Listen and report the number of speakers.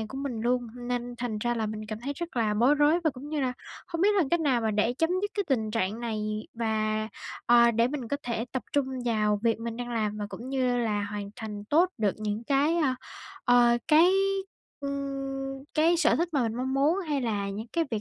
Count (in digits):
1